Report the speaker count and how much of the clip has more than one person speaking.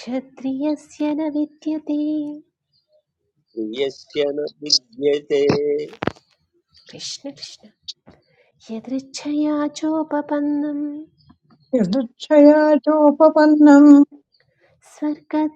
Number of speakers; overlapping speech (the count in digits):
3, no overlap